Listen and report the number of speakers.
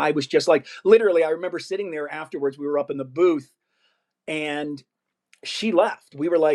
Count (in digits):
1